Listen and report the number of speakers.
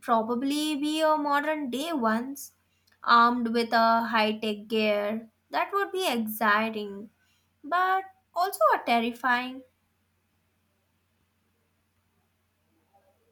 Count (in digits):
1